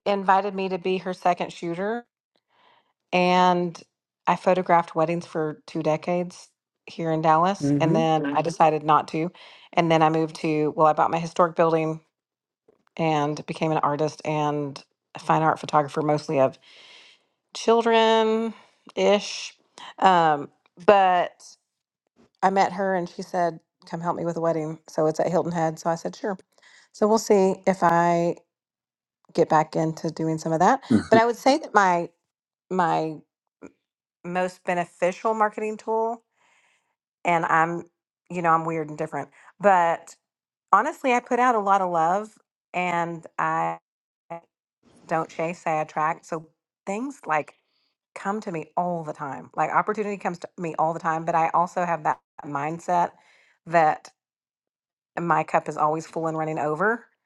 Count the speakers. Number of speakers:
one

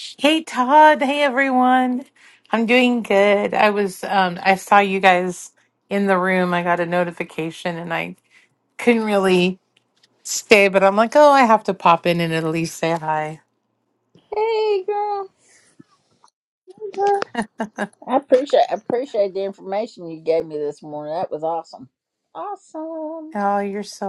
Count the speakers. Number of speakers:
two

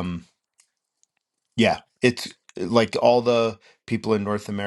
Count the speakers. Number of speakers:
one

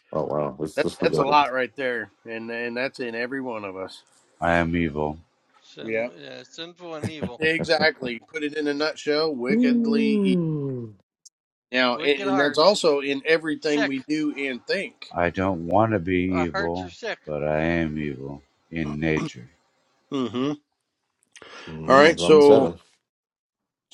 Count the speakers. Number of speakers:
four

